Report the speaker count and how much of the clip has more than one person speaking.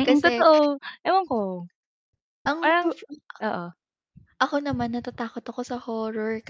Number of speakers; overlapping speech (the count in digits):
2, about 13%